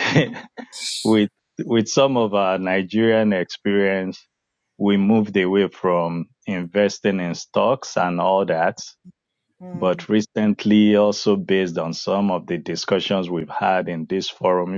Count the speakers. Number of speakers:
1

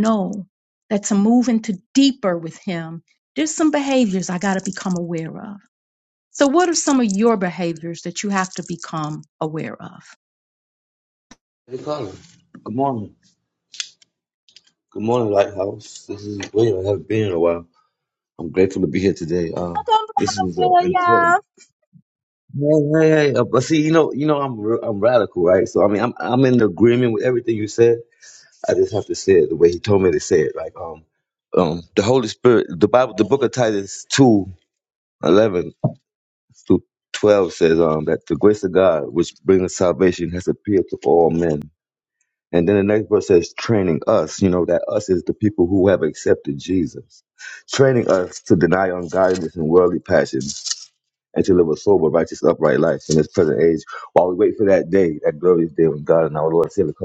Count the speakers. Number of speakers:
2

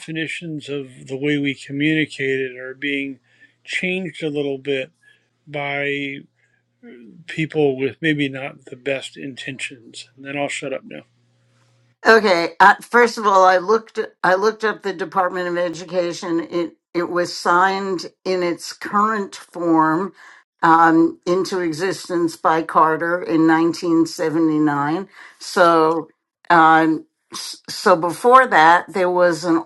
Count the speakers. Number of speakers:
2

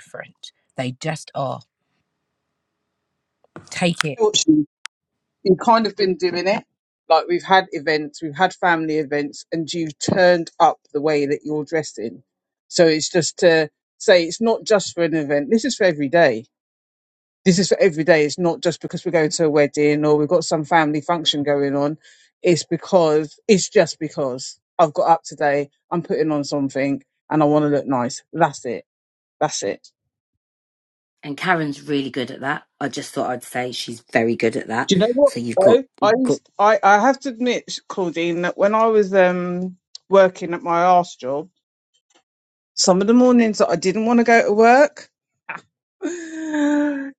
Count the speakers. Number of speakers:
3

